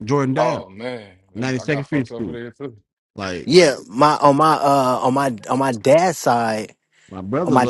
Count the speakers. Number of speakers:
three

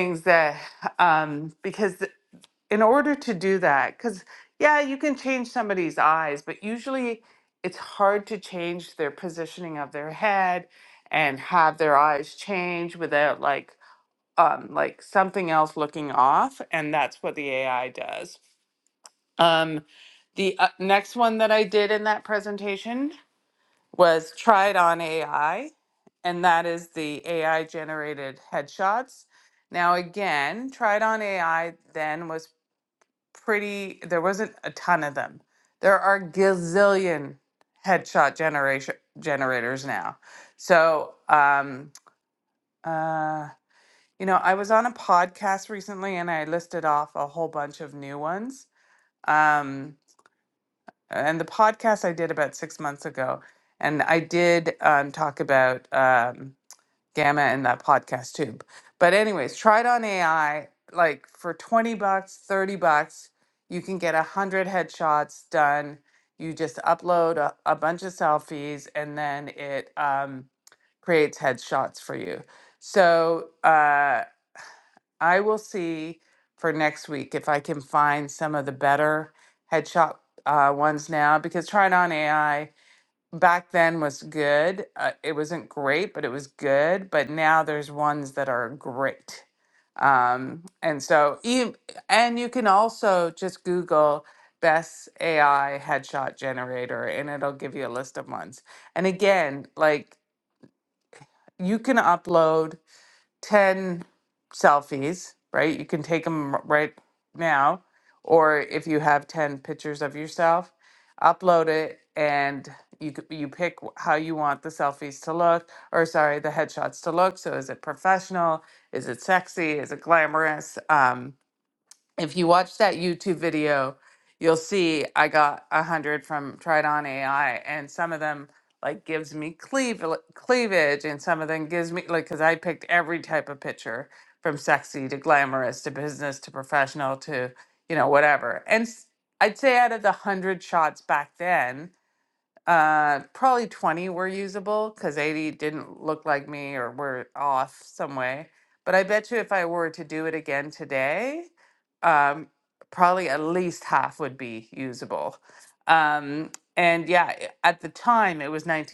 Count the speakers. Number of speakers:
one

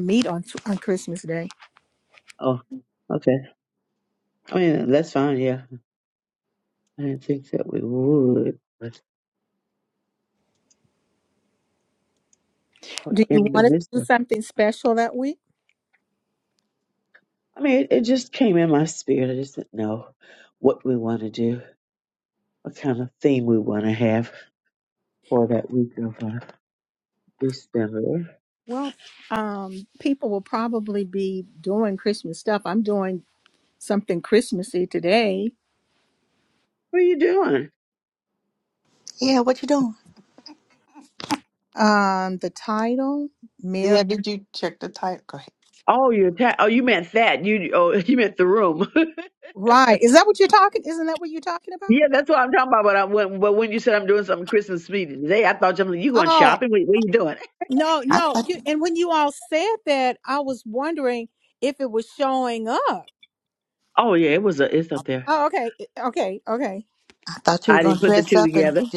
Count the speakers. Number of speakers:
four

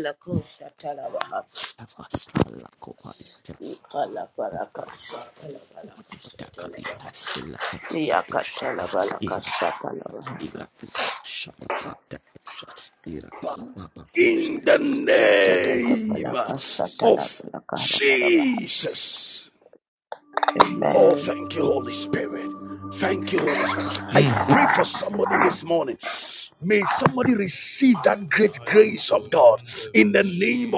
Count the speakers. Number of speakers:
three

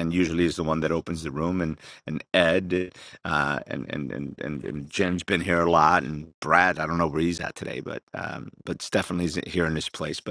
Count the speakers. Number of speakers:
one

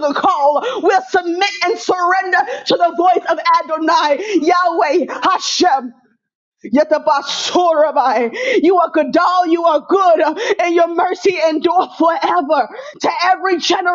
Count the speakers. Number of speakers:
one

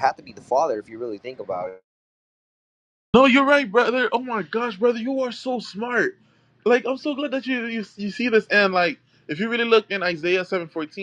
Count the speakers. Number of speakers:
two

